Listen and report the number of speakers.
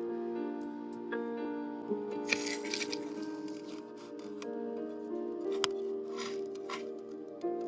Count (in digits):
0